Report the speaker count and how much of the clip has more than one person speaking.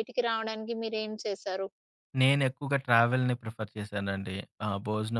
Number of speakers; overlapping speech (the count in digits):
2, no overlap